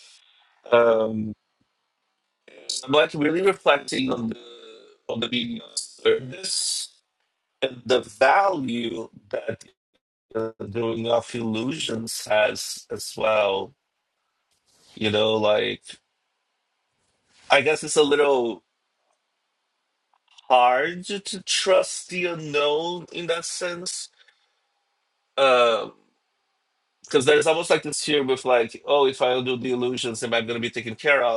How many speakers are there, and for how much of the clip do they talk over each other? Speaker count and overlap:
1, no overlap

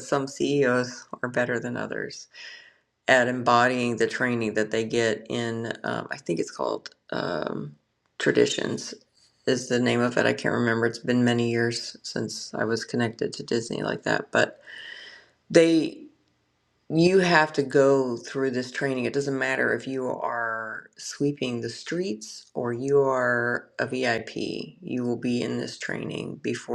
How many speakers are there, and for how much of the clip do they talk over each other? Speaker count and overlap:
1, no overlap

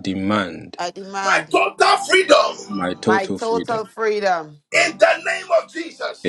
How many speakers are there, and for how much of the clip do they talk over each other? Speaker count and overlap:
3, about 18%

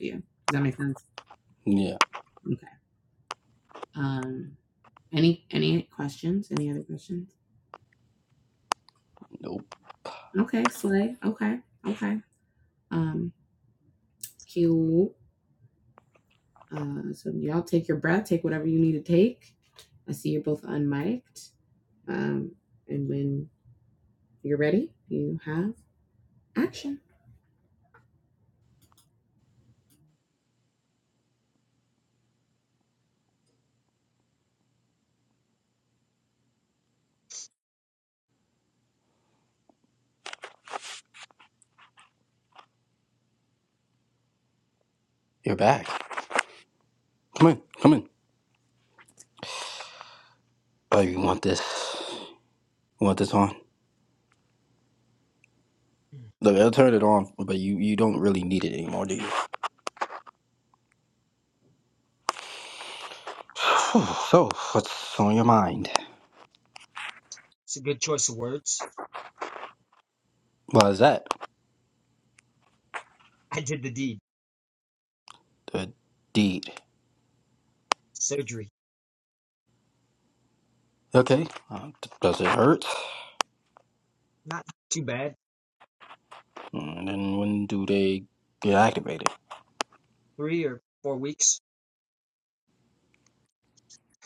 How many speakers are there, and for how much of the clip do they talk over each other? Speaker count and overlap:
3, no overlap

